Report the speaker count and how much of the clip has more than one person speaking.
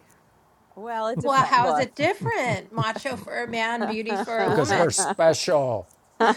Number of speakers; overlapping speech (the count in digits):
3, about 23%